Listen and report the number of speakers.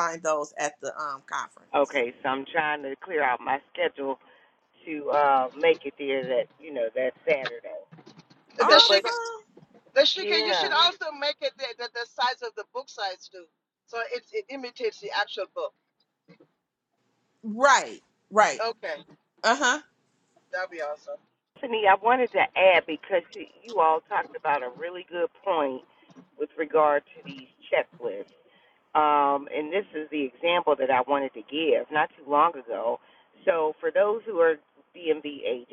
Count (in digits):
3